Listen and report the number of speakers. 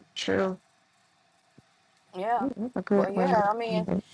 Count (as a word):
two